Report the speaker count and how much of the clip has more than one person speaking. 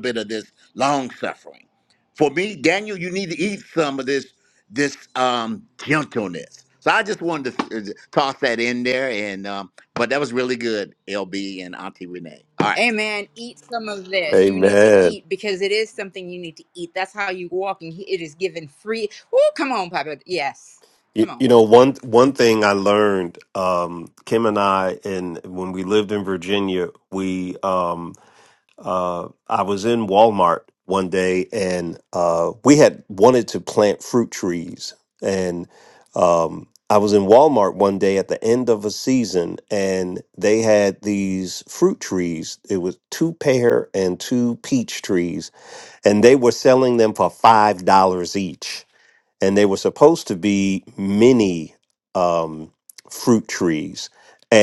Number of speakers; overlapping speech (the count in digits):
3, about 2%